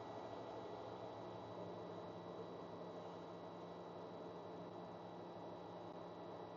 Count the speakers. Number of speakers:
0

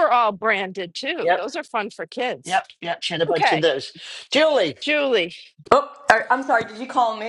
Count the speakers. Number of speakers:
3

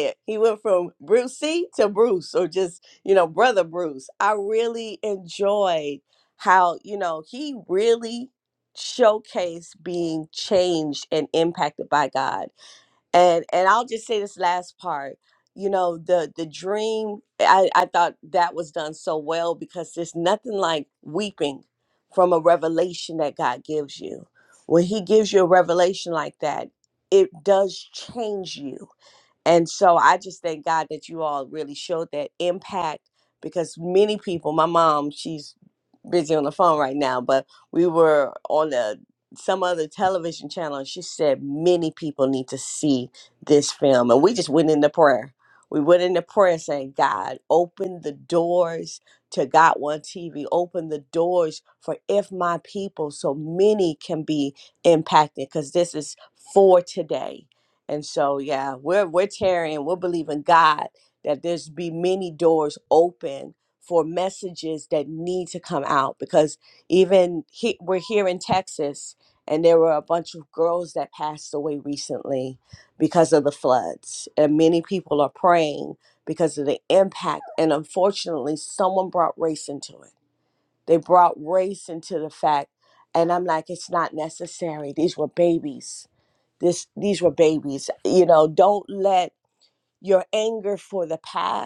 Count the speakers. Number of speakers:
1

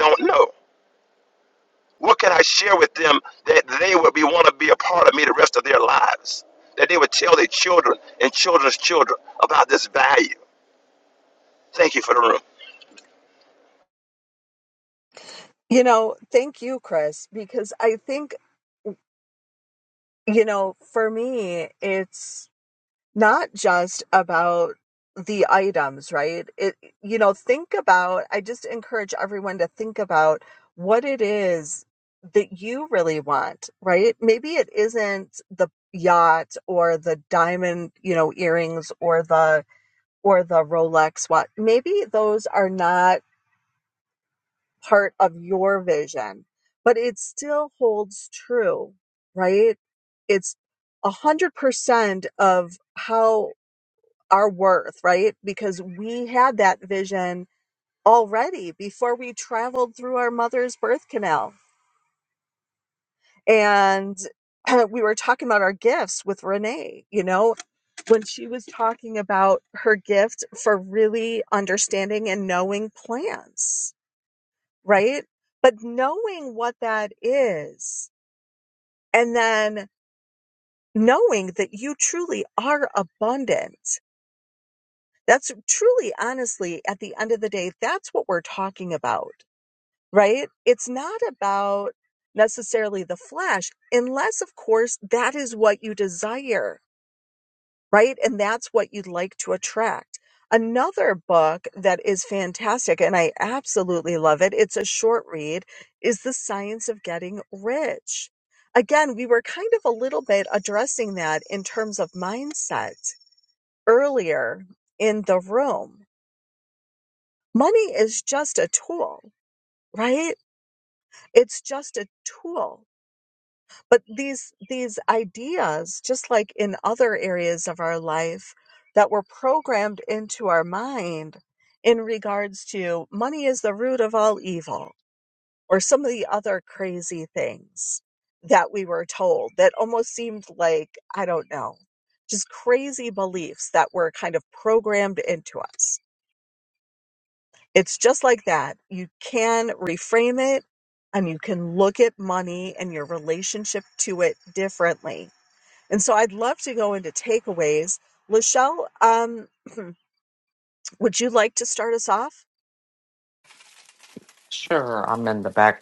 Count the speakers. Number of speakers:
3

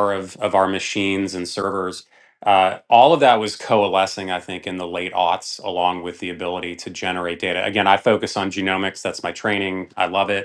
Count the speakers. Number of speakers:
1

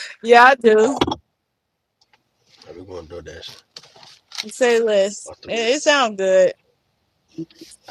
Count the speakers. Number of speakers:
2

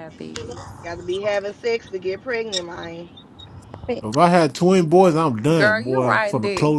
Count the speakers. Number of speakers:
3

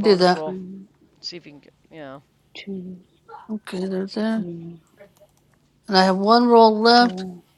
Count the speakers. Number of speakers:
3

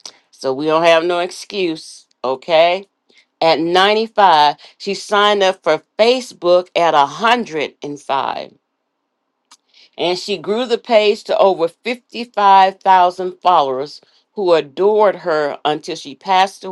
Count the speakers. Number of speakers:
1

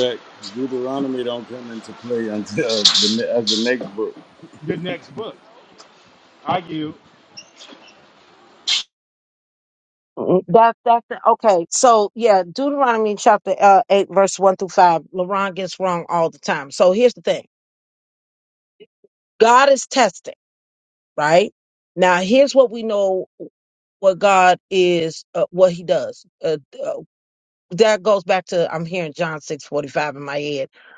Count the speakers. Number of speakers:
3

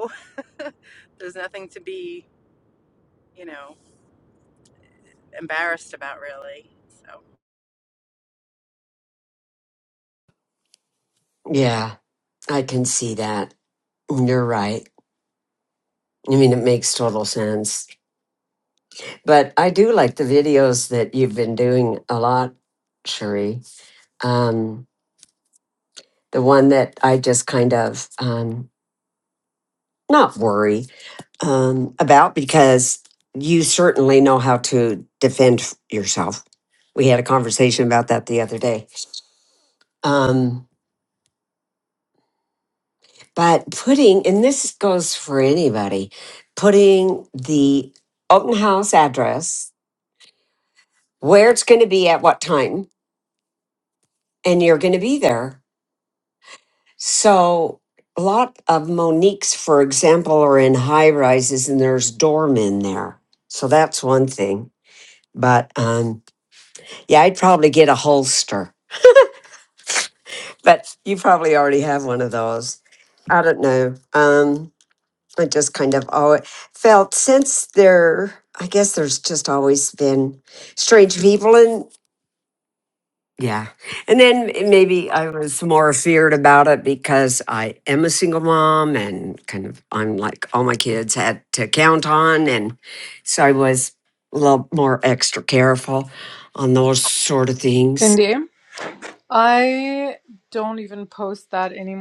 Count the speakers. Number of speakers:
3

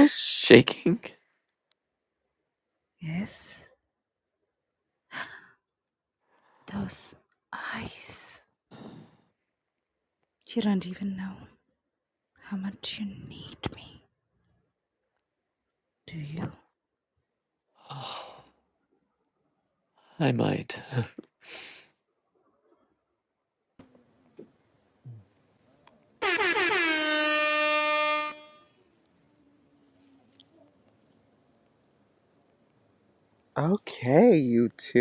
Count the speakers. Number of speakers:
3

